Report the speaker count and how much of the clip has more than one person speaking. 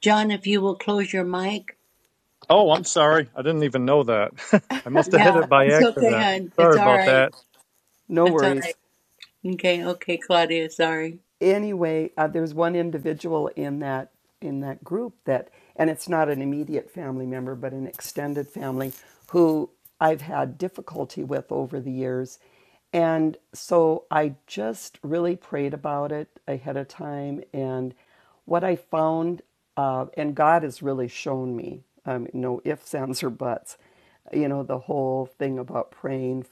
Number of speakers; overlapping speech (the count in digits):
3, about 6%